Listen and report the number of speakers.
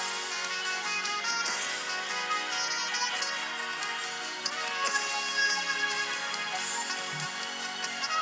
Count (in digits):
0